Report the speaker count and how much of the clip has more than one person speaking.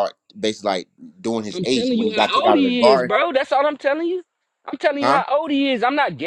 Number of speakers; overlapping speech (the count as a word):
two, about 28%